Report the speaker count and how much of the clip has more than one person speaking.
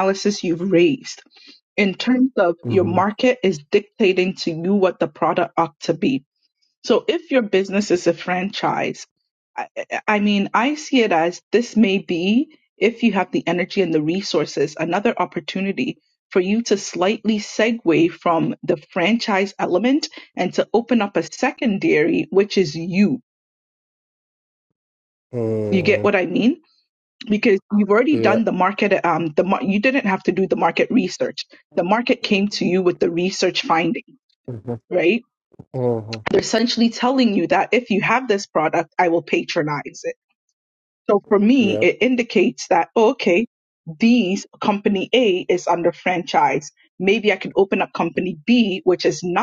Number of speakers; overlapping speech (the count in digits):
2, about 3%